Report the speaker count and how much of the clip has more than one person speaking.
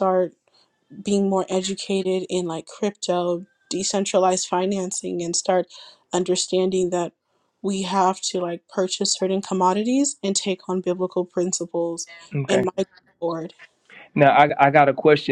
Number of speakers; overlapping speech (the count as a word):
two, about 1%